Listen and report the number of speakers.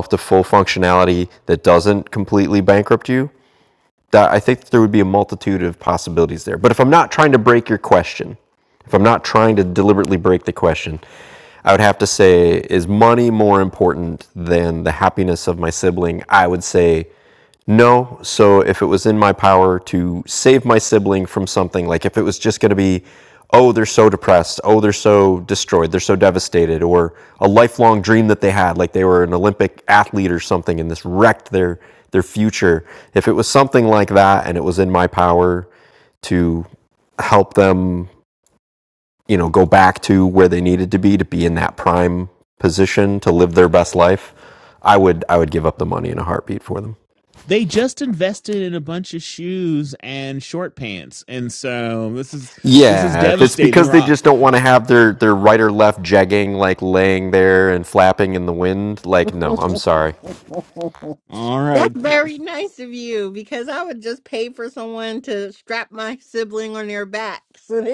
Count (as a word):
three